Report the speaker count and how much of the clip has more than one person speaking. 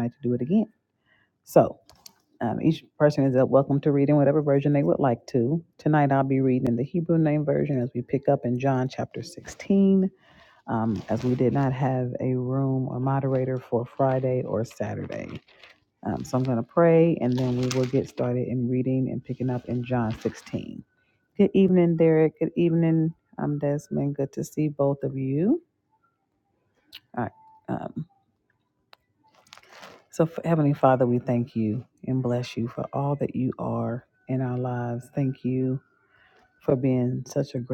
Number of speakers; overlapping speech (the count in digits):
1, no overlap